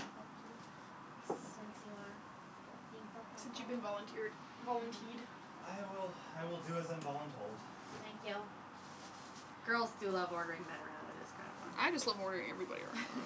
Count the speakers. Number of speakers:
3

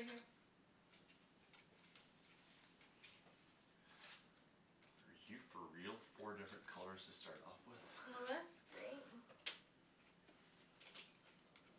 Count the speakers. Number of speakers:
2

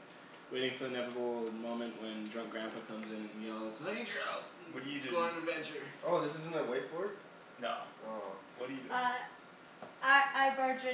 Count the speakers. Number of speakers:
4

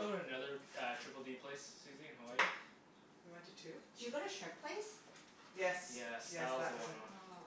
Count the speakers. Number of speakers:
3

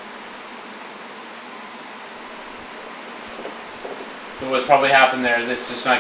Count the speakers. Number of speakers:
1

